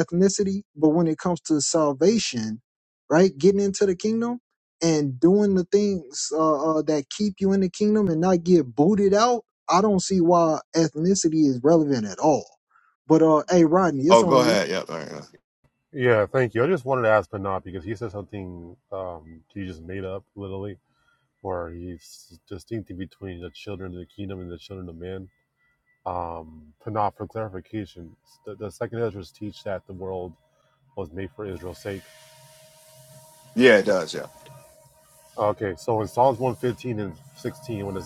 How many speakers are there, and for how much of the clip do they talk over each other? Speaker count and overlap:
3, about 1%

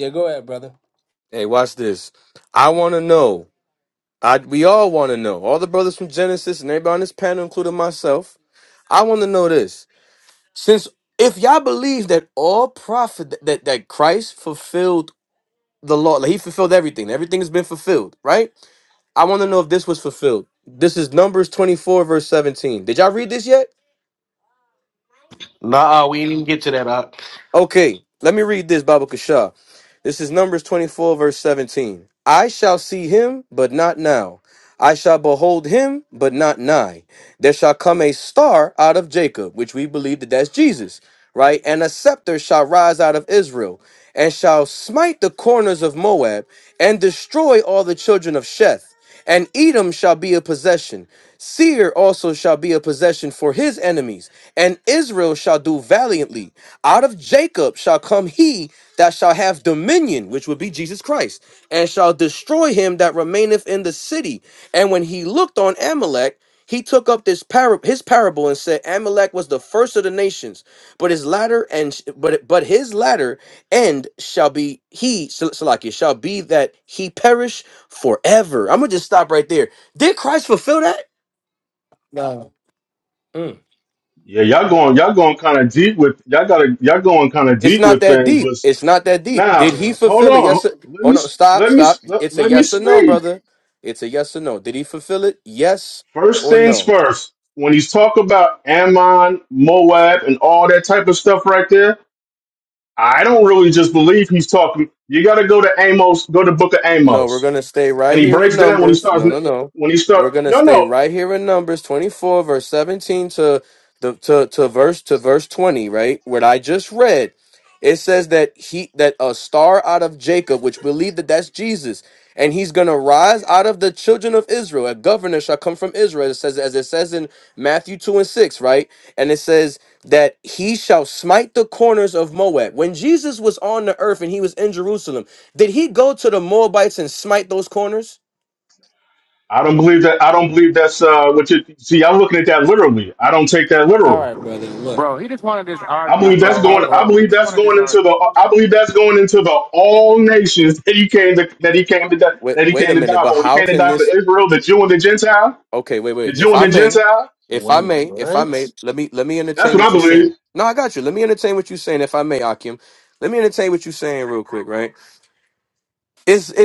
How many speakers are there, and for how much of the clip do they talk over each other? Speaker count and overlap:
5, about 8%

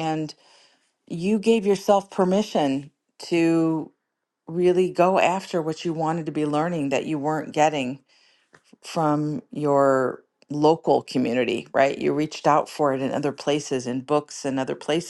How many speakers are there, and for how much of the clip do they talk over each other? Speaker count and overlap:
1, no overlap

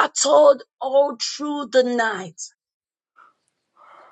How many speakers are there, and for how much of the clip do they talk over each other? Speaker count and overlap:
1, no overlap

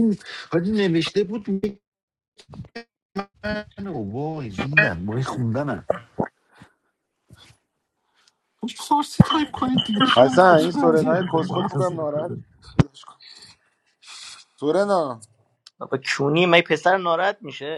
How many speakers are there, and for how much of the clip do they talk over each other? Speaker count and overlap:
3, about 12%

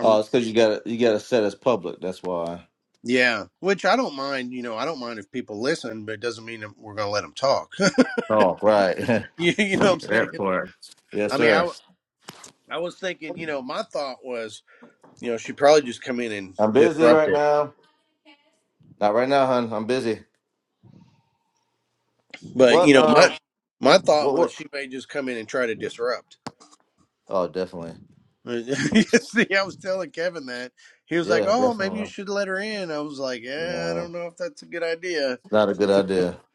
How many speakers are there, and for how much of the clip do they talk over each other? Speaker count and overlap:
2, about 12%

